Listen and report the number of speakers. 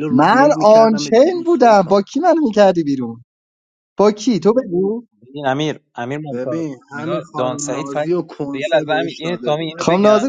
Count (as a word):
three